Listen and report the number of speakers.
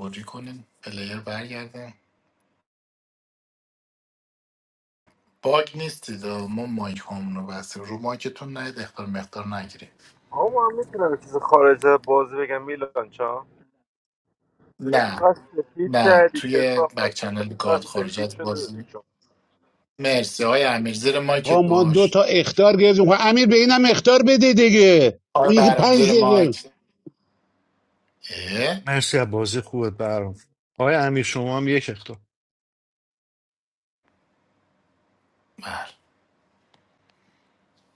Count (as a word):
four